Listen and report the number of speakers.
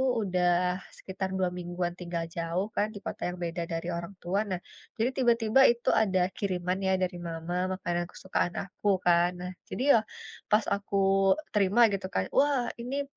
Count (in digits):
1